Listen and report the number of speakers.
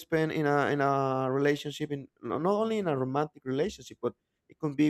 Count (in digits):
1